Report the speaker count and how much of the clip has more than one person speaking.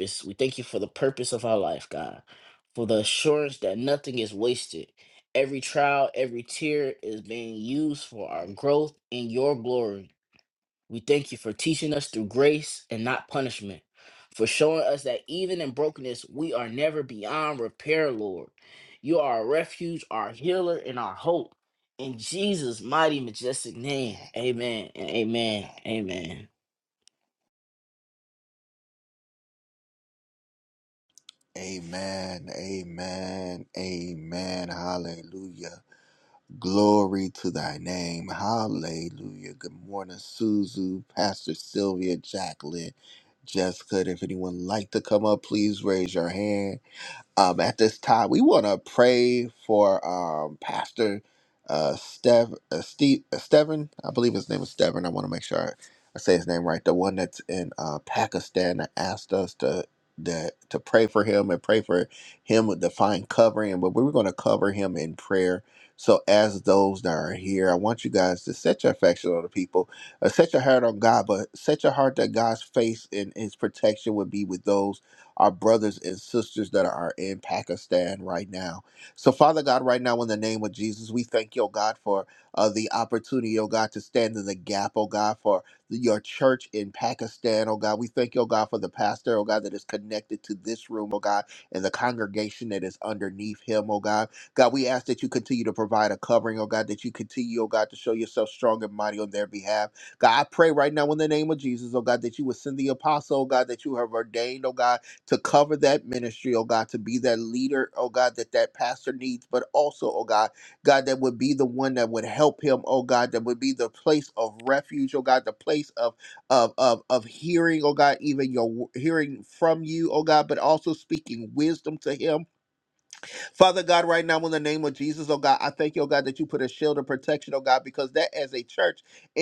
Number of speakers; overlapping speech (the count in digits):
2, no overlap